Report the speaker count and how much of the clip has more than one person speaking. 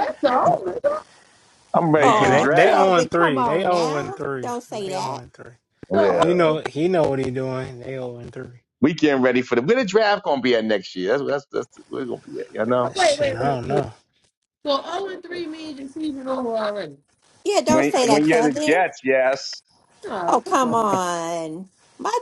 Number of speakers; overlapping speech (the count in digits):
4, about 28%